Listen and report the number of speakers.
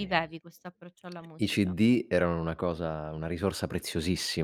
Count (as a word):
two